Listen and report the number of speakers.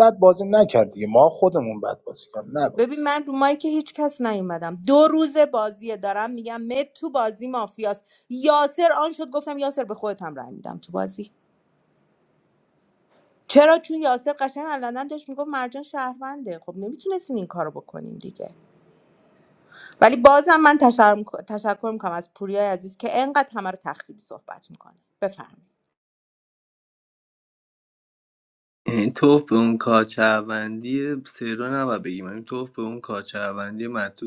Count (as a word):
three